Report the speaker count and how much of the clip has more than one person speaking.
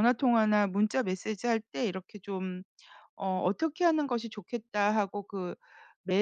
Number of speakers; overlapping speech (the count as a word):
one, no overlap